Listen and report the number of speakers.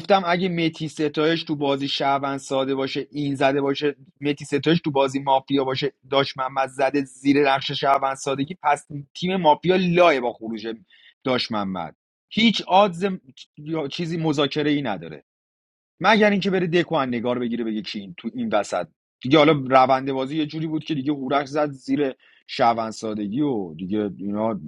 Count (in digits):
1